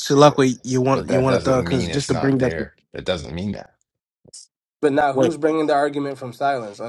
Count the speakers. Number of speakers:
3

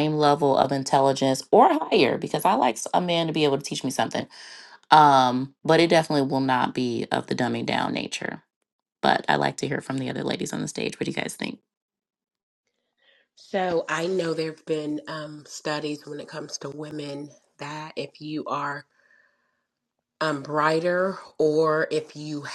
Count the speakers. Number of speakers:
2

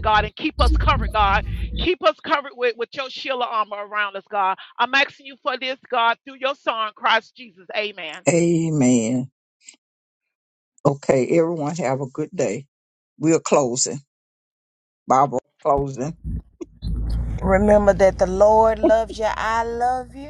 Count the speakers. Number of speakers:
3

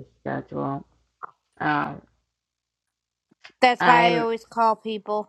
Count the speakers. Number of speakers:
2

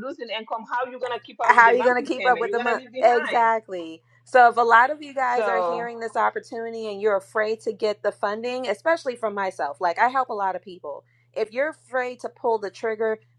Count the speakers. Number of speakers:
2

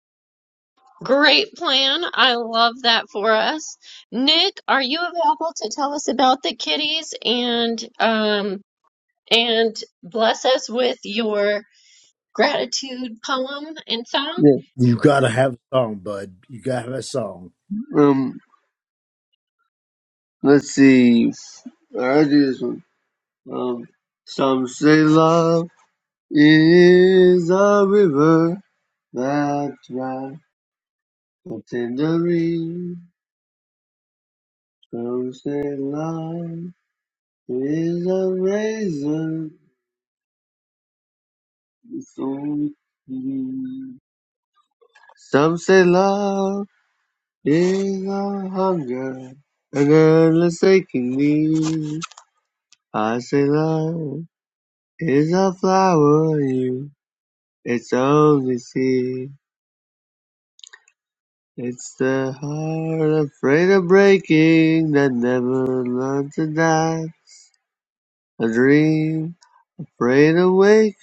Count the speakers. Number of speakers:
3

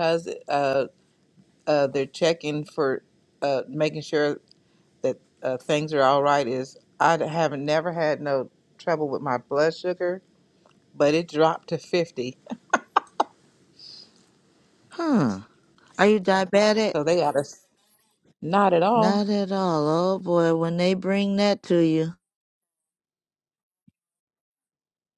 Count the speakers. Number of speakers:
2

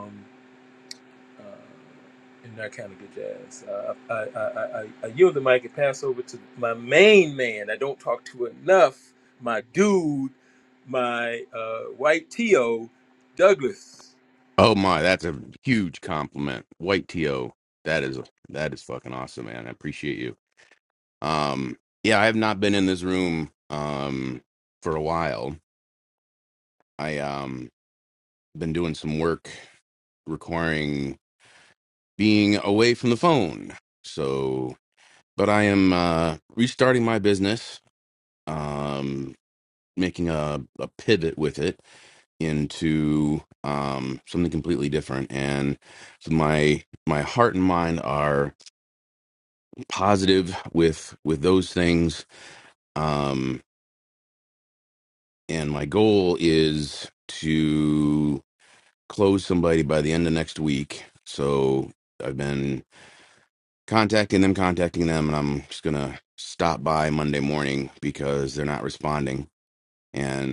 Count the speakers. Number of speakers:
2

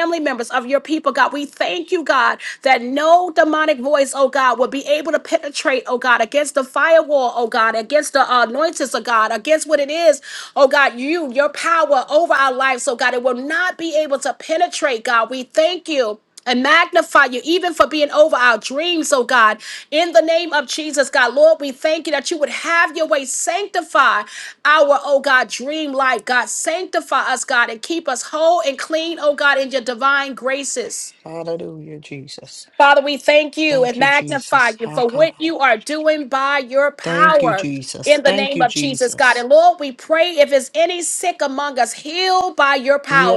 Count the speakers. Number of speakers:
2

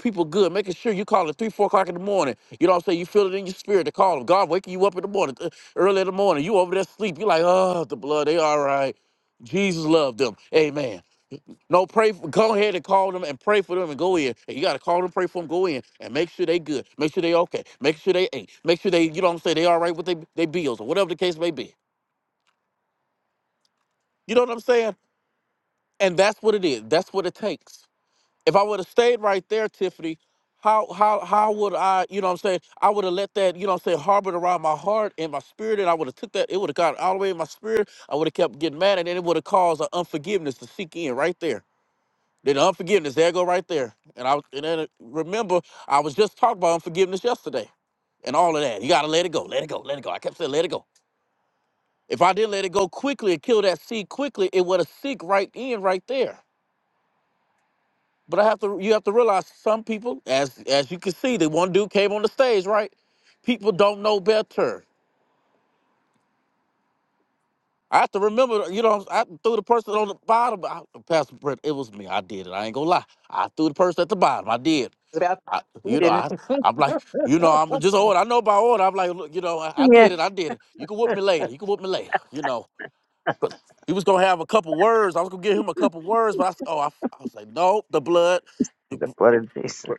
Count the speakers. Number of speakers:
2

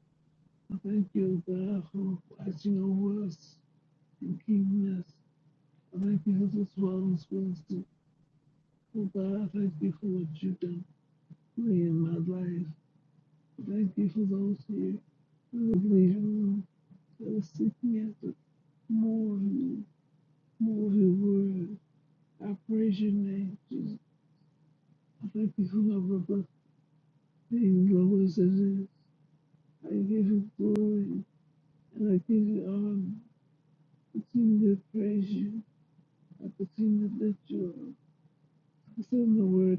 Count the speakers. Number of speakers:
1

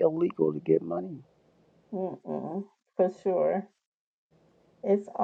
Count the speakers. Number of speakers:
2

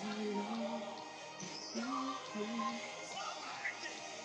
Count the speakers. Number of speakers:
0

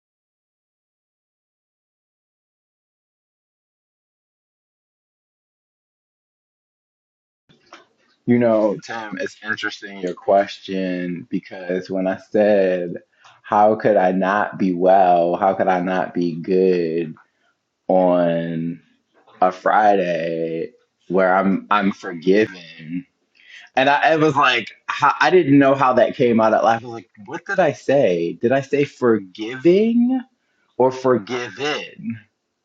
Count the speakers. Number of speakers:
1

